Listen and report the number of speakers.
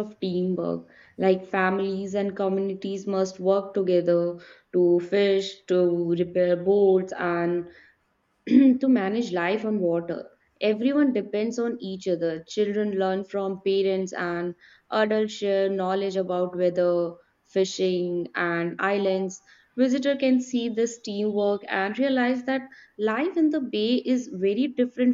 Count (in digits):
1